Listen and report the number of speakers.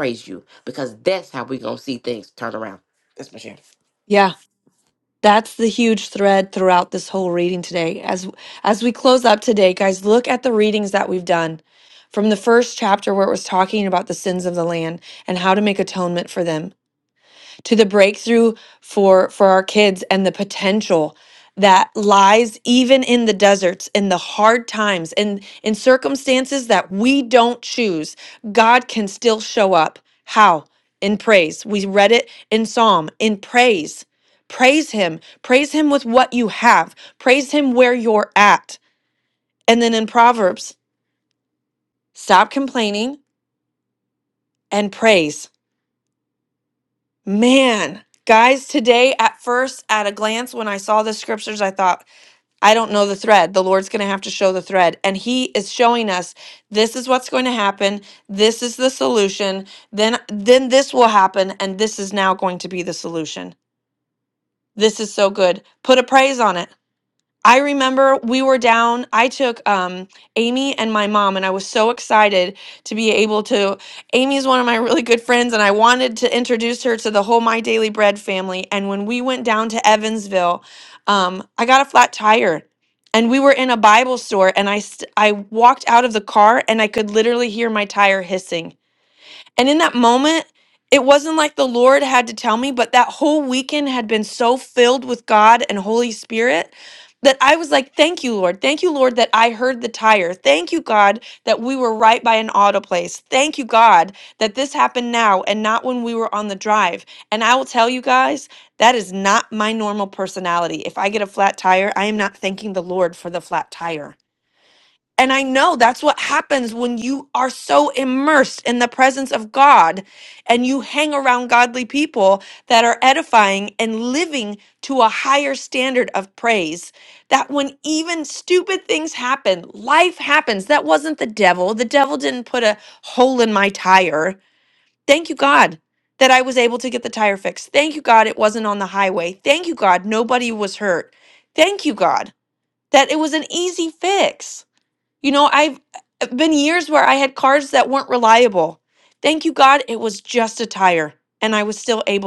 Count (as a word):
two